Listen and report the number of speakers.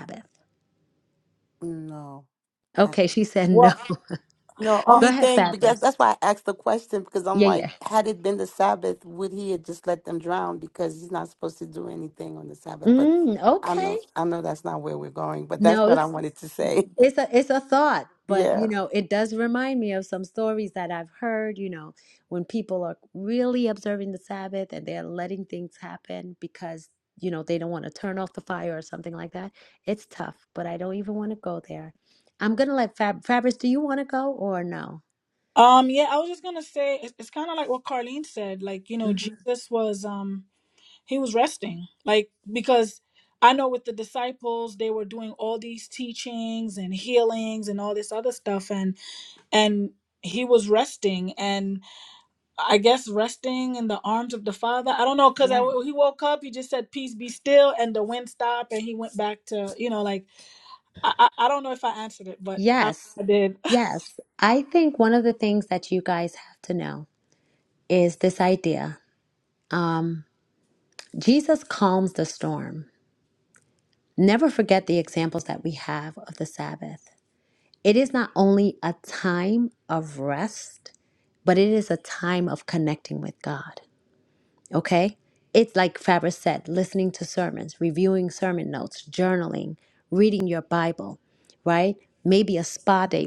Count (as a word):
three